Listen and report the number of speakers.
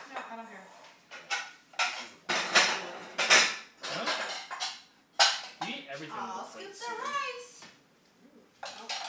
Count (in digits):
4